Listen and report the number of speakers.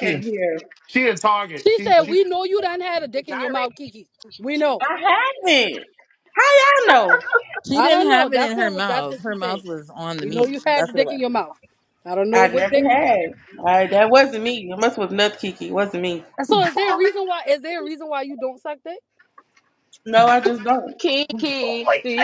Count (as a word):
five